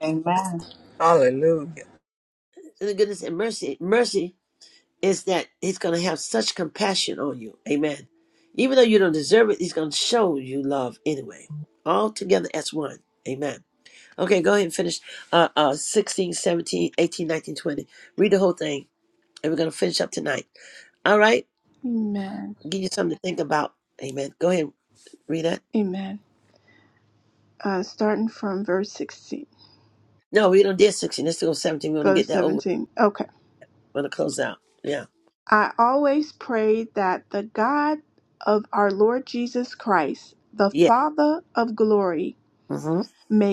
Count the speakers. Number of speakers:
three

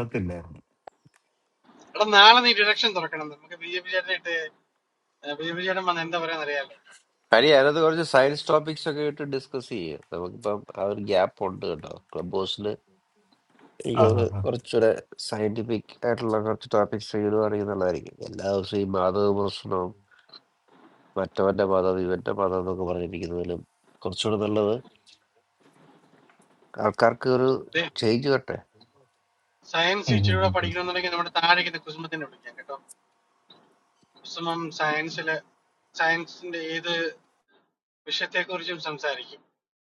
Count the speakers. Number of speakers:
three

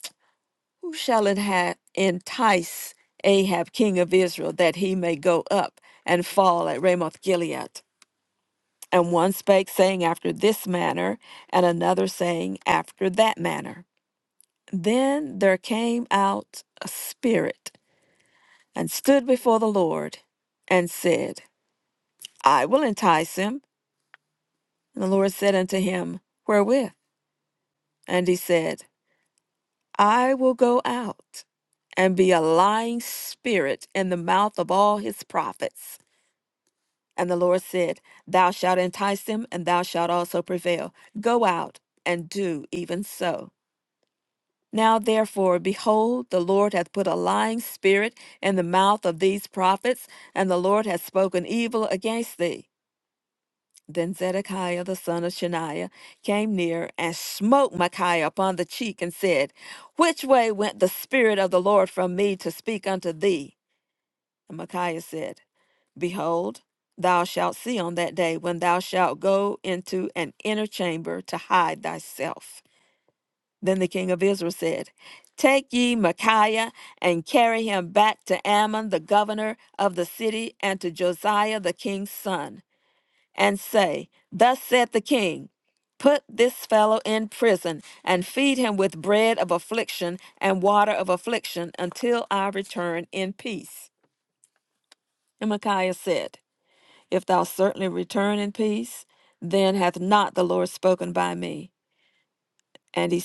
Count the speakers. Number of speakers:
one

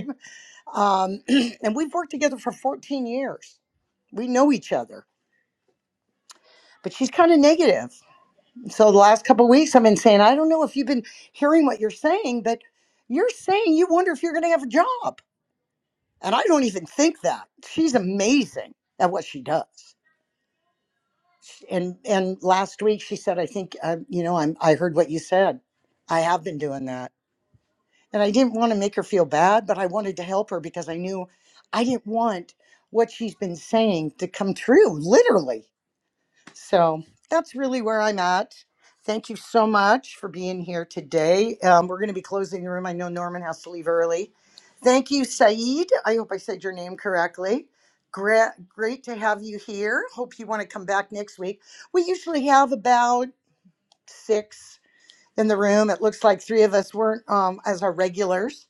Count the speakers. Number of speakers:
one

